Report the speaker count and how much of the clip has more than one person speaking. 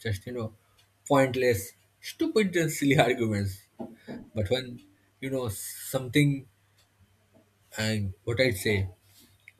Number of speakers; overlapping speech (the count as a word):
one, no overlap